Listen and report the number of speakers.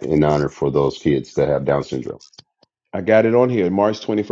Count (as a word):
two